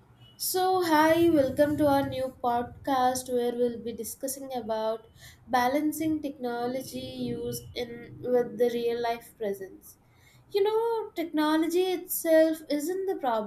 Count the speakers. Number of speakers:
1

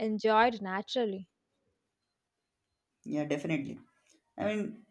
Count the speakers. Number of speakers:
2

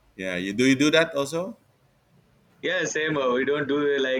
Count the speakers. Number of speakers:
2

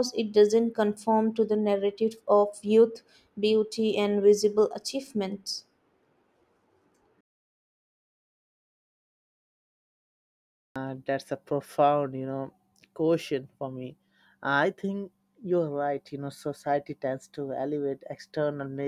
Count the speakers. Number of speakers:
2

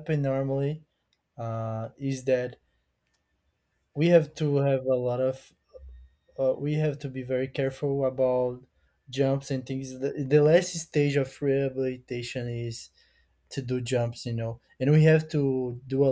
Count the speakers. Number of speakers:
1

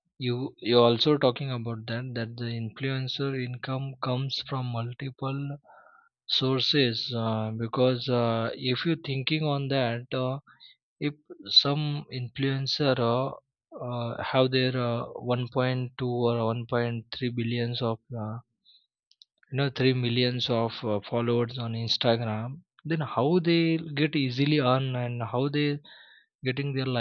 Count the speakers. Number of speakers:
1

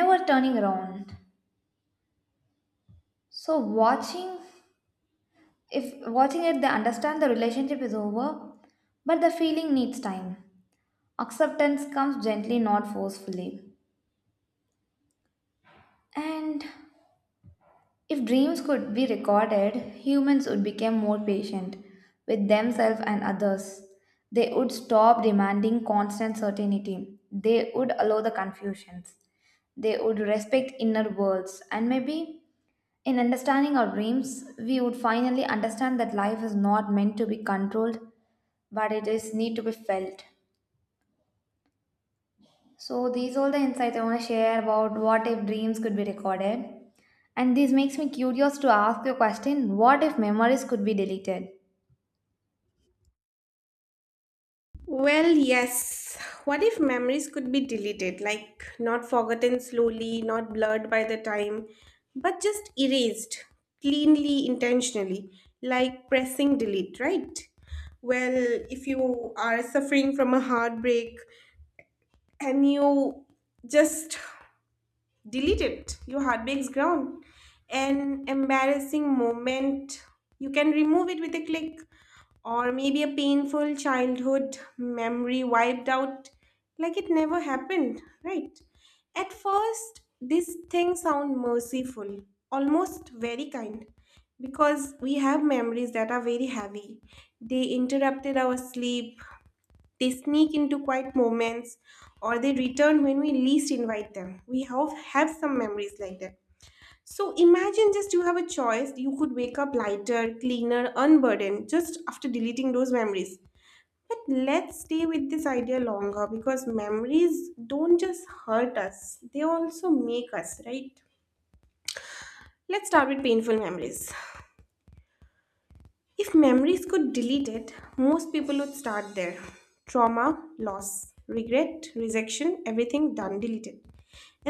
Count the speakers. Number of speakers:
2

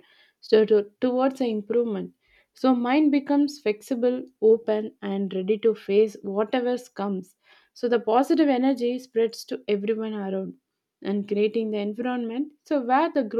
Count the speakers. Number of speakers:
1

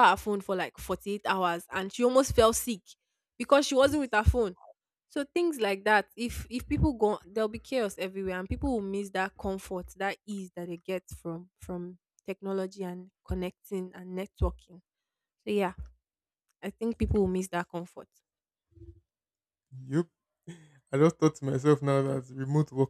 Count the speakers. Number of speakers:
2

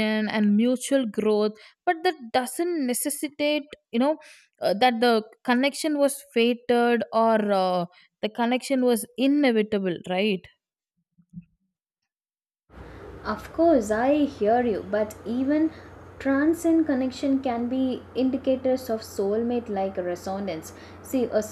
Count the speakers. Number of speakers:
2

